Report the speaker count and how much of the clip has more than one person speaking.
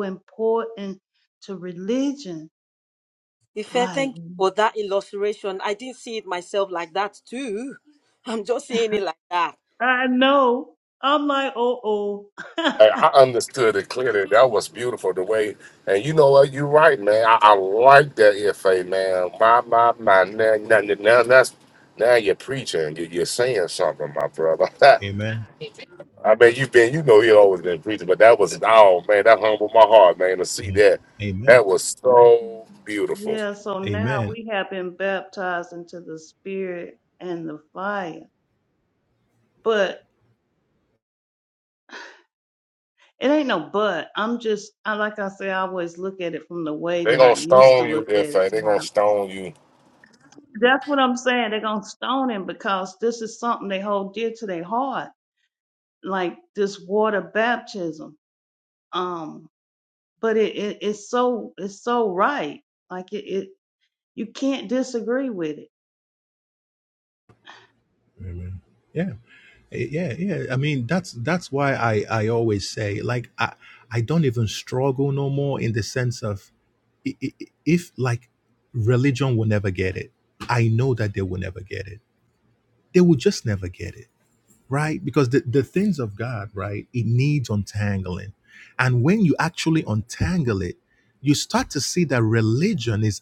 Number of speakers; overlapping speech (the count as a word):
four, about 3%